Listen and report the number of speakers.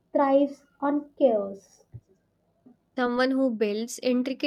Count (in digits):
2